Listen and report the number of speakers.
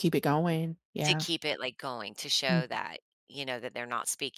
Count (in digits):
2